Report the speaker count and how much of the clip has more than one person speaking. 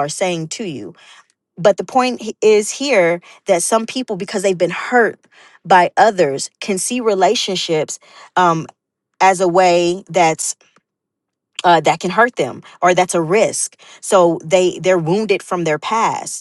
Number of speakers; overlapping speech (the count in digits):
1, no overlap